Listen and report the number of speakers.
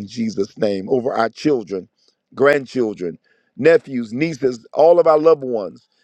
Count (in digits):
1